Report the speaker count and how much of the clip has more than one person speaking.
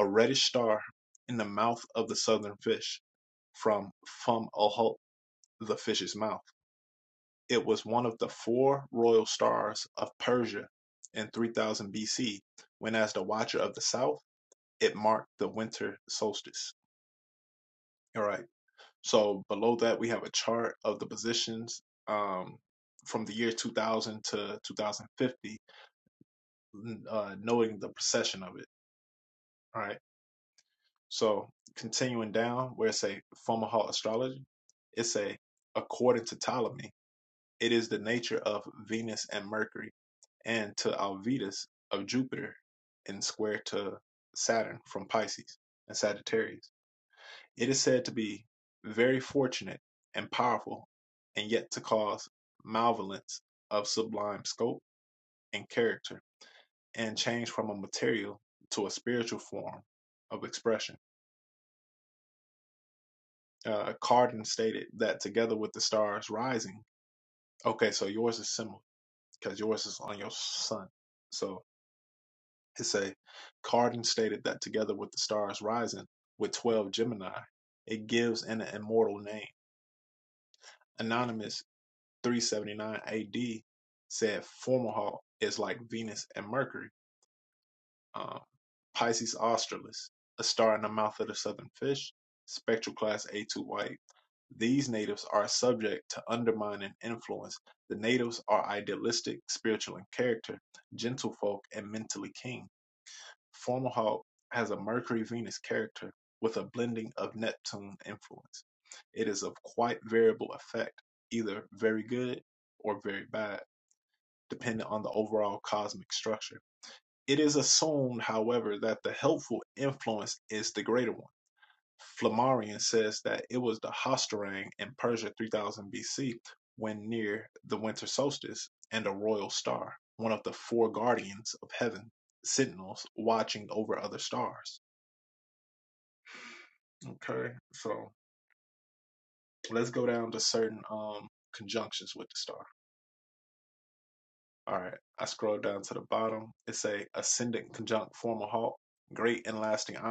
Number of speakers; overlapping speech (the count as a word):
one, no overlap